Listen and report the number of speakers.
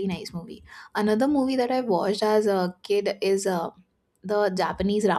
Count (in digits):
1